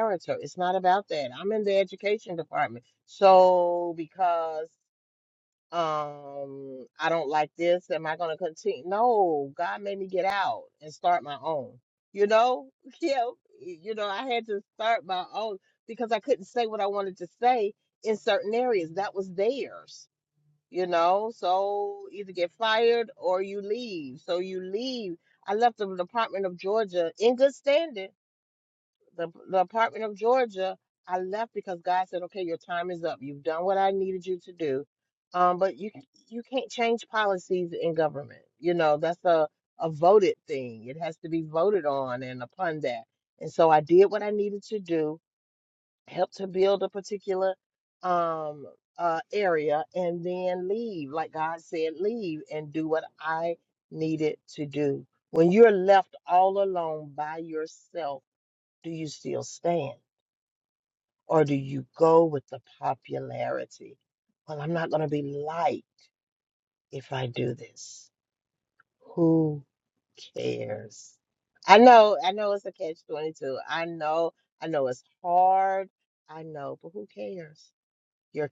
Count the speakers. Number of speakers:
one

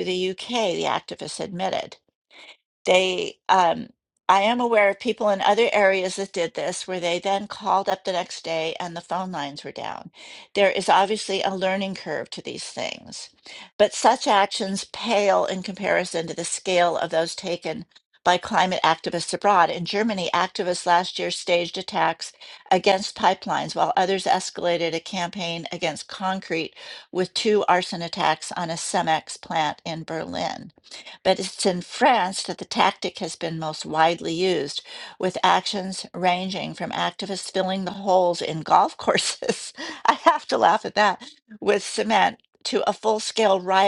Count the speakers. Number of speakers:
one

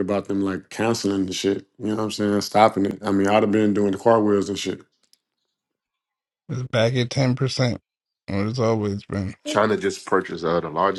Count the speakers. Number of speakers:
three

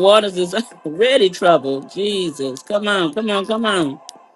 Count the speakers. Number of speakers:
one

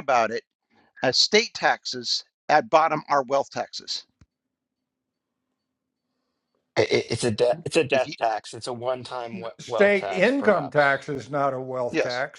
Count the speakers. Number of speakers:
three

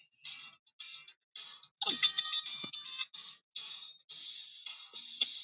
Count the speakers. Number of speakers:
zero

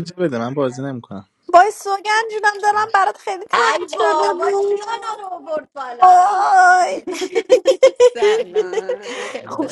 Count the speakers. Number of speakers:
three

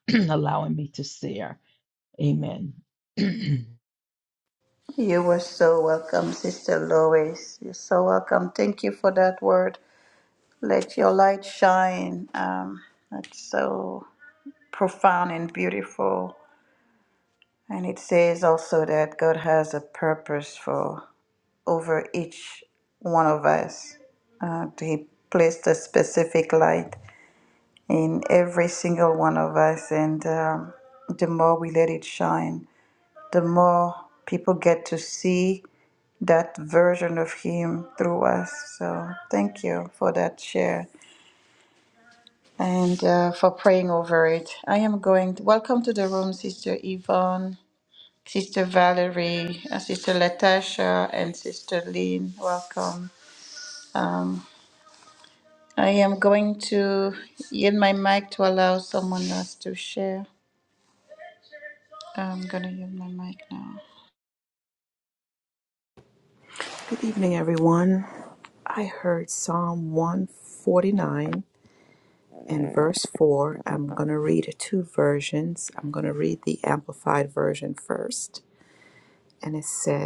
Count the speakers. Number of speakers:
three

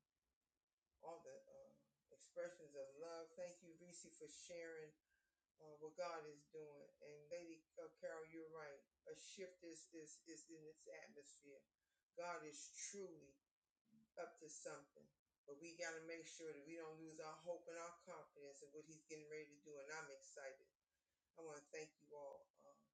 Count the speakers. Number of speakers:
one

